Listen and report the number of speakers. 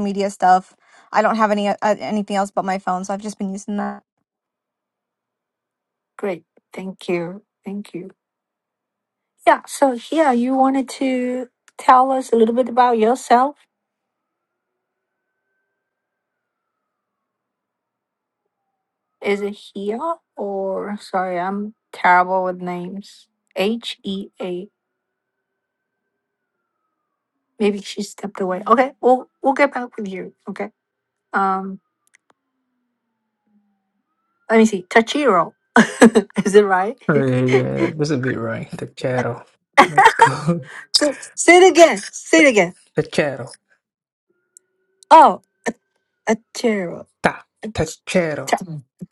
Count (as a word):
three